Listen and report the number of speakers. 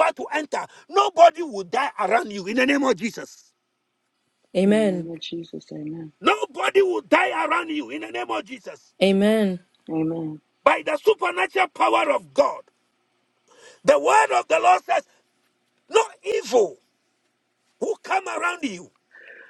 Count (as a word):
three